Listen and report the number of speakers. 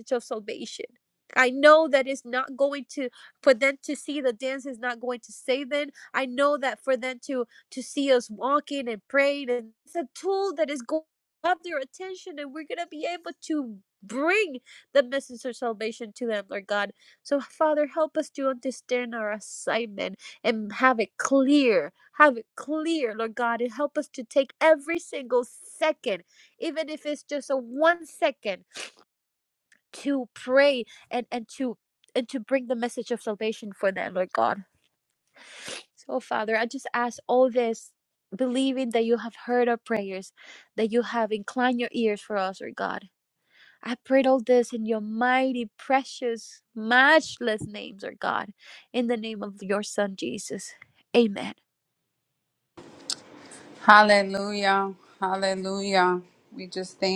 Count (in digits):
2